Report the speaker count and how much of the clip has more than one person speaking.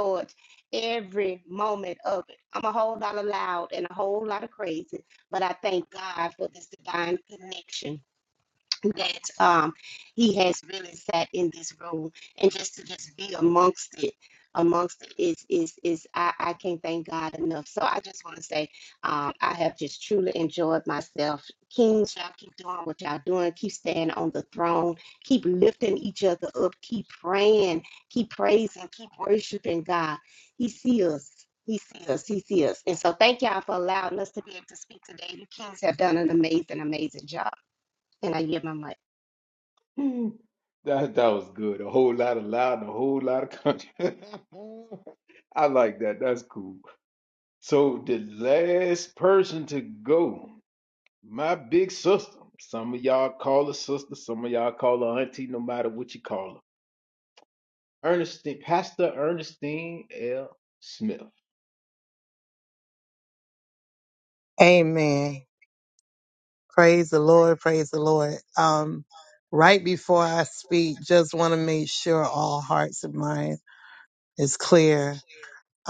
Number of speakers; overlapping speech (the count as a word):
three, no overlap